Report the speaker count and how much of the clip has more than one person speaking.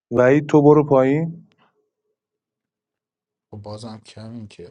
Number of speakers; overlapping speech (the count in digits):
2, no overlap